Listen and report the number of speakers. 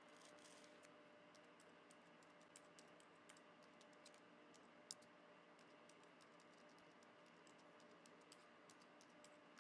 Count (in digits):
0